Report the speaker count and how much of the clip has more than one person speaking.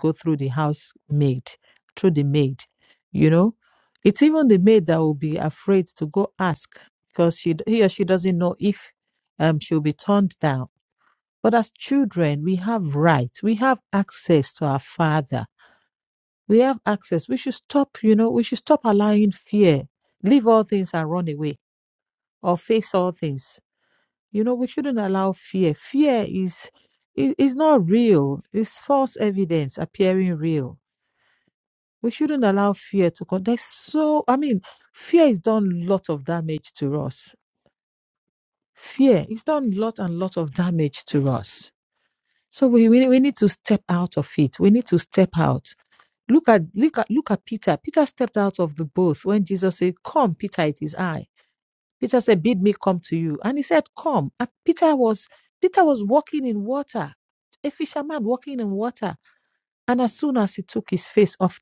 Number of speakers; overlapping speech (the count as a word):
one, no overlap